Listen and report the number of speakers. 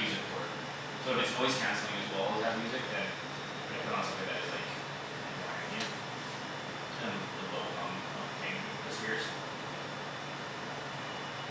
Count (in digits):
1